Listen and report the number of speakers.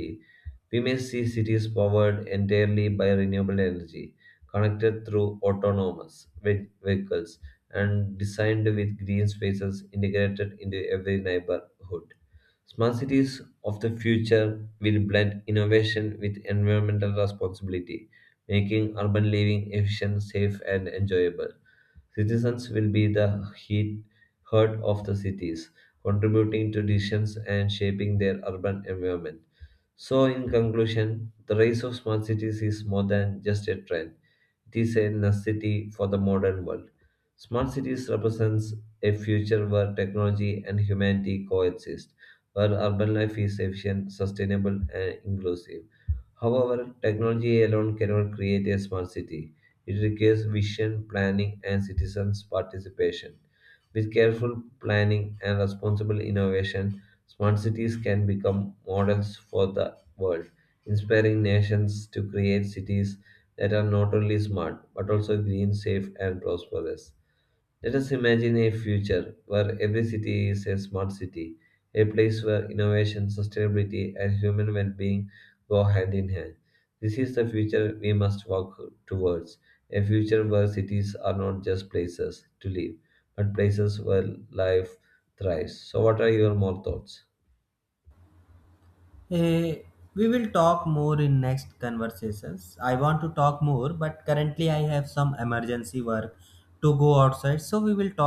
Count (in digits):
2